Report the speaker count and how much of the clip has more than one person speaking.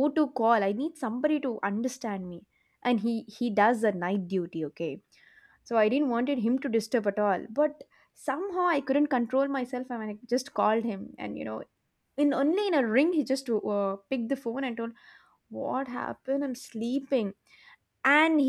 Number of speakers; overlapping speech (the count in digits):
1, no overlap